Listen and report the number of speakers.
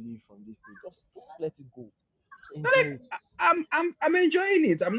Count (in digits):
2